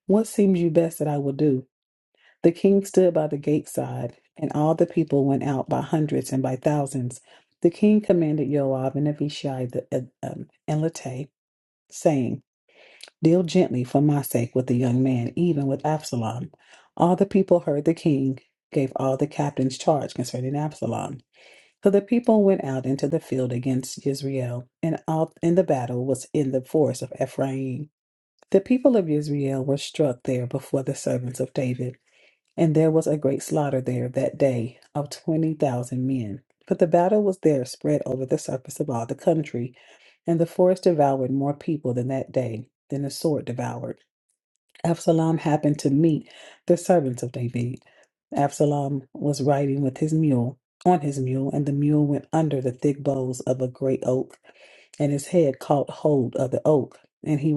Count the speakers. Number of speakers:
1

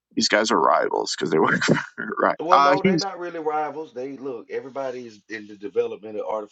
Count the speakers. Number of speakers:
2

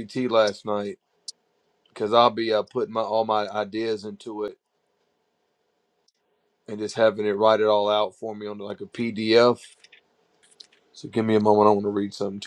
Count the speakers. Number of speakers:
1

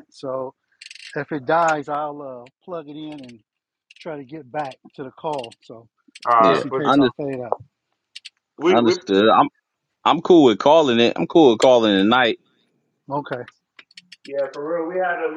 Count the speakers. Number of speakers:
3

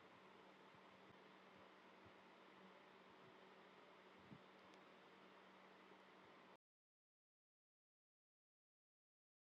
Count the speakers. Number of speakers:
0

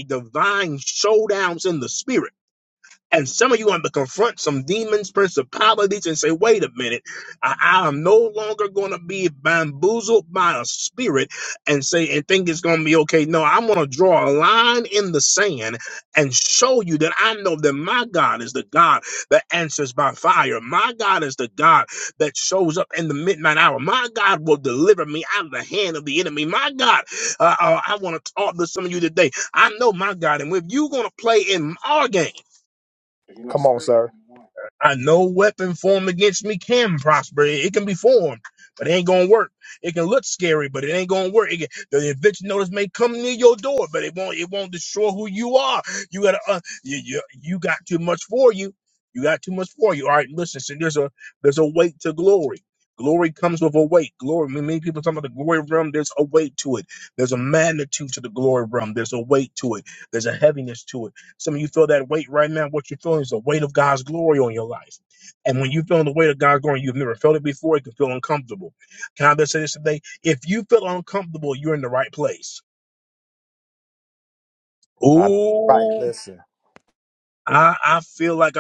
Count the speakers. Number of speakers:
2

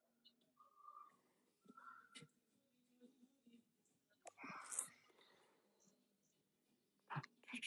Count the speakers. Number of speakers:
0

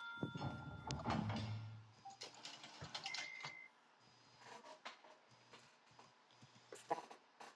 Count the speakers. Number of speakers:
0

